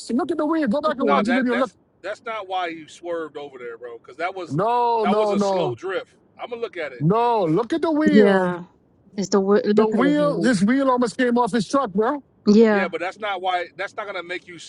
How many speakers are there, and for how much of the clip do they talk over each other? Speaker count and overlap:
3, about 19%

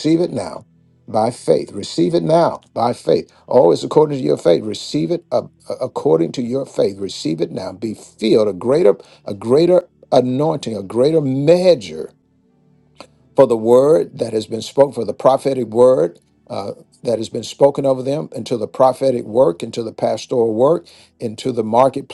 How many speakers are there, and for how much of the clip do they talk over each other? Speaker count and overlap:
1, no overlap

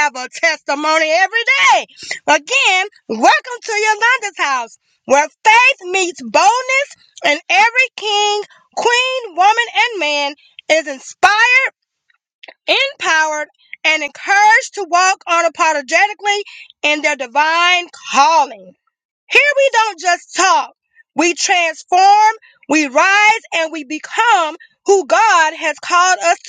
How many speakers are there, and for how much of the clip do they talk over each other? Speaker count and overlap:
1, no overlap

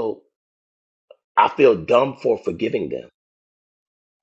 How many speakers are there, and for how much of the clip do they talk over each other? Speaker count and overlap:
1, no overlap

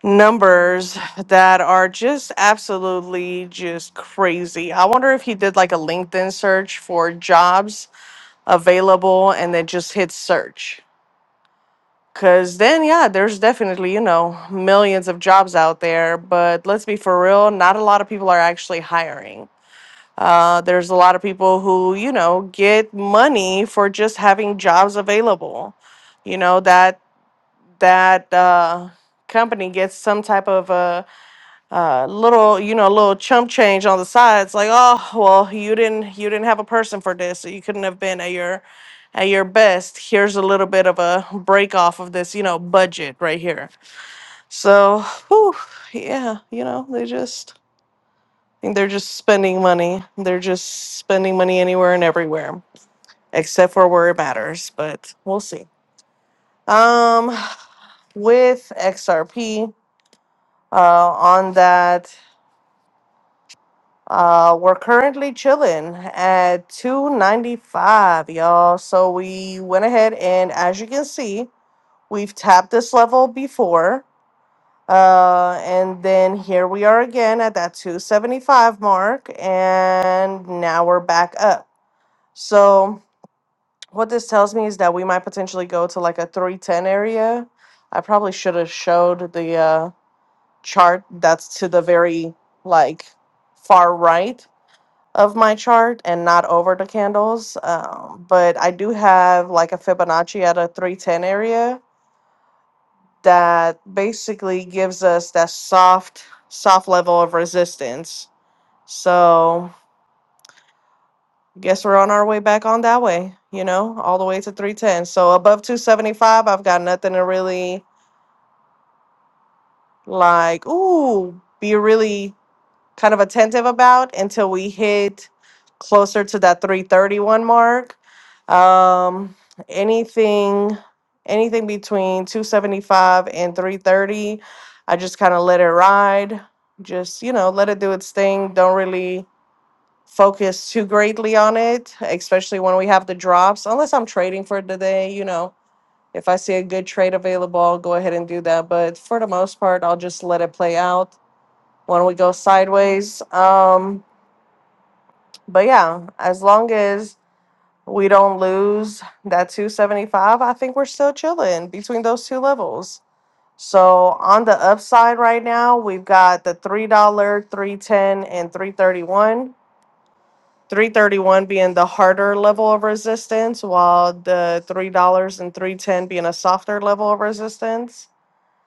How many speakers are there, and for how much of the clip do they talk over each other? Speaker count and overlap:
1, no overlap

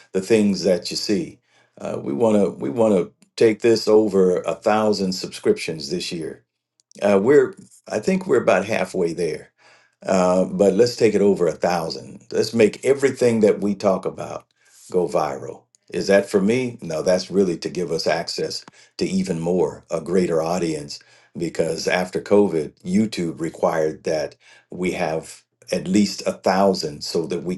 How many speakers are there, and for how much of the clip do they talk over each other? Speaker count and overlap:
1, no overlap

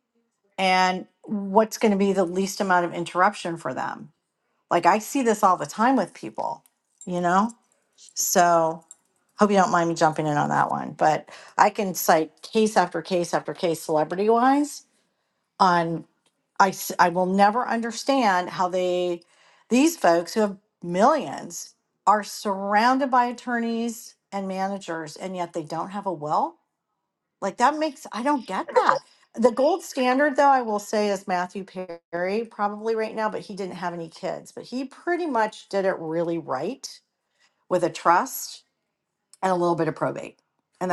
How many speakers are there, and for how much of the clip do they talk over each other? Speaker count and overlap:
1, no overlap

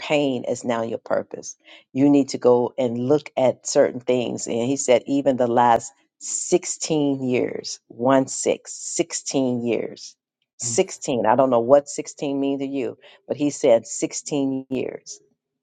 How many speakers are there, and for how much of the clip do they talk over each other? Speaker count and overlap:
1, no overlap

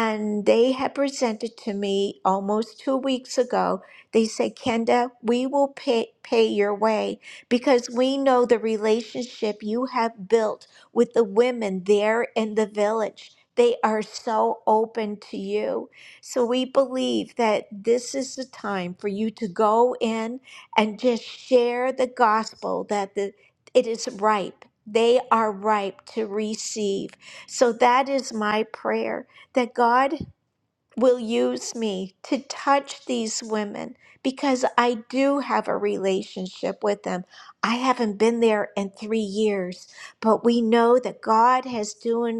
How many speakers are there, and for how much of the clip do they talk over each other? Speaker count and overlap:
1, no overlap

